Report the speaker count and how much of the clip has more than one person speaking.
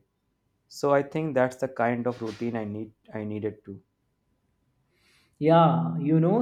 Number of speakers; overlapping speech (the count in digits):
2, no overlap